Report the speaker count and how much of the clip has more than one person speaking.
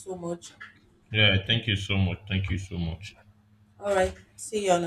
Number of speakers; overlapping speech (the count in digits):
2, no overlap